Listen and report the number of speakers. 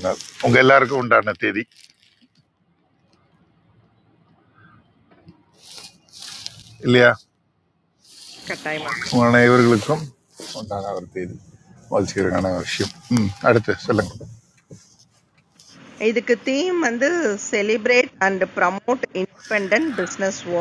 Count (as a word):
two